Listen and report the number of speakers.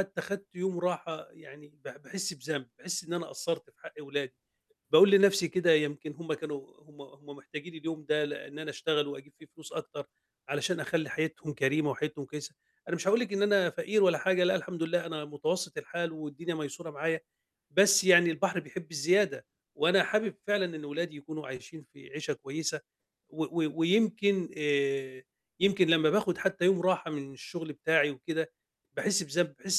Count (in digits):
1